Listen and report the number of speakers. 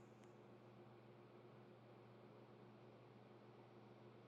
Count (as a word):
zero